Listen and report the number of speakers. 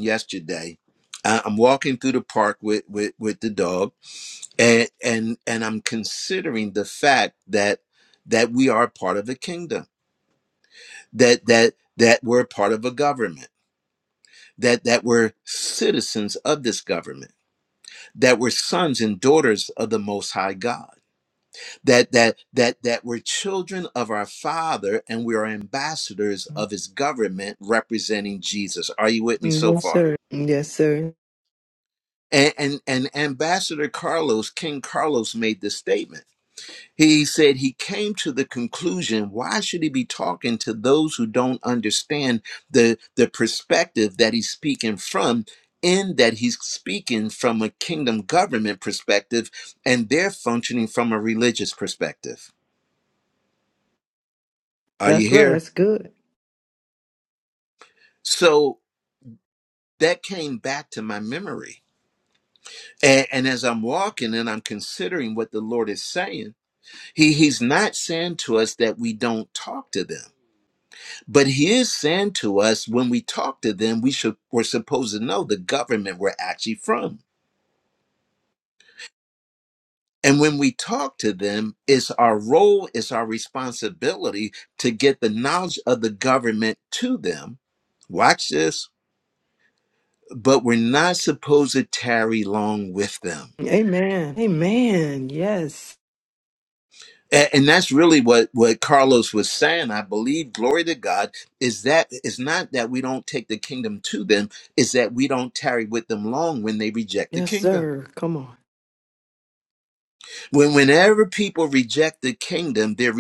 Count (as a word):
two